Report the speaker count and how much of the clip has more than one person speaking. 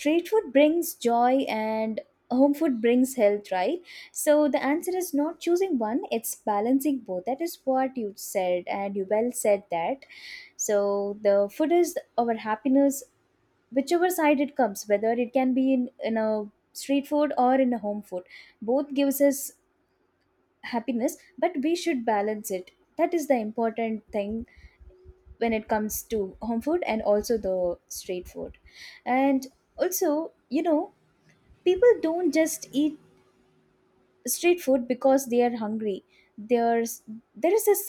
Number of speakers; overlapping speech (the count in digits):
1, no overlap